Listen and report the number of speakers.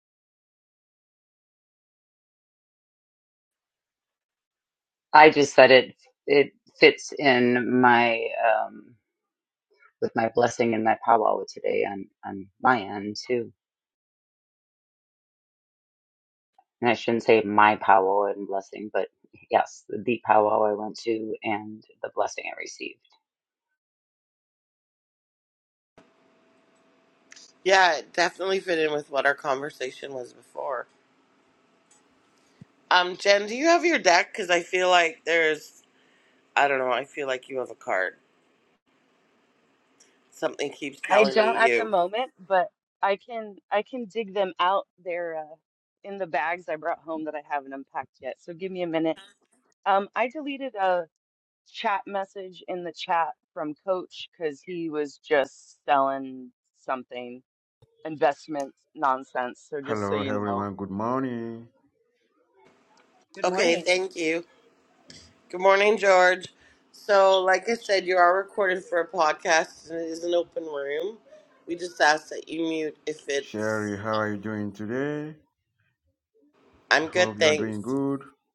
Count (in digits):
4